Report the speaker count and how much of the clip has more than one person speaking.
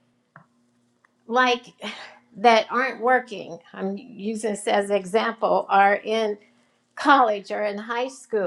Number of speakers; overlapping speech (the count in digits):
1, no overlap